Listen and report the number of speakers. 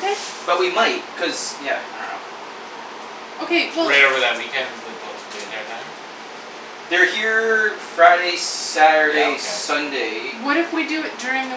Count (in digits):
3